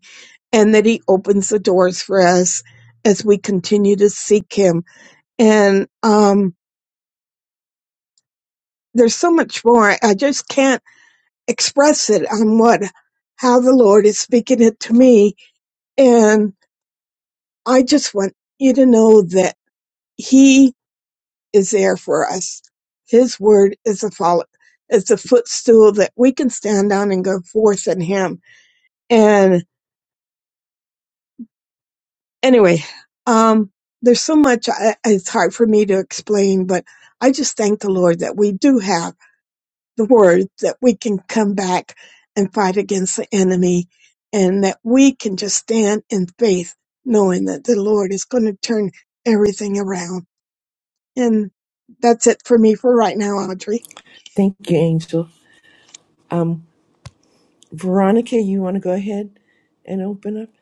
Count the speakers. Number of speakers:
2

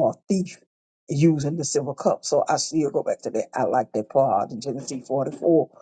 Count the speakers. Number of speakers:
1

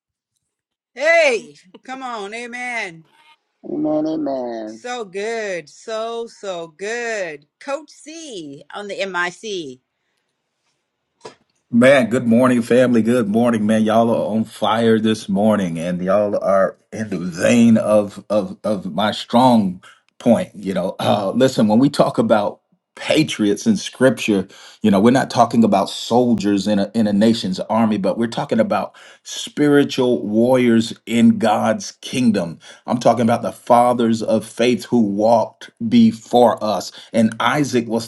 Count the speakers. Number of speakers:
3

